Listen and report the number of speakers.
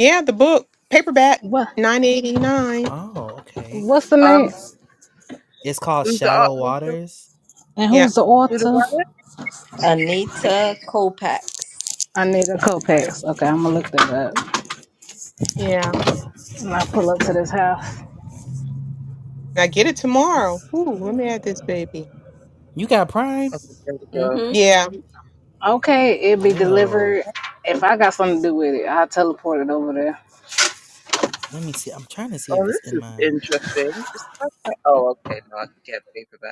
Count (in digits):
5